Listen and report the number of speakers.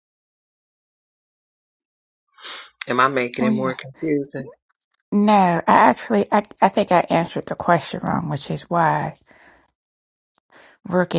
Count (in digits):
2